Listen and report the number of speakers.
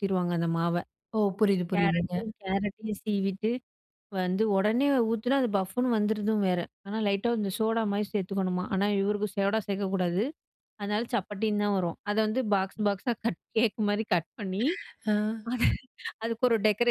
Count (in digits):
2